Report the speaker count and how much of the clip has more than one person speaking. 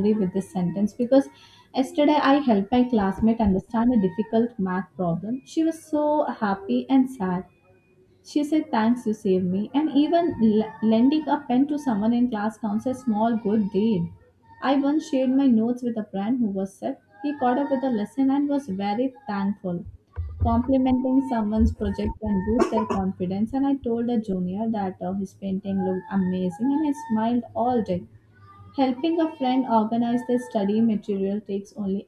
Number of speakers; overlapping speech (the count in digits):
1, no overlap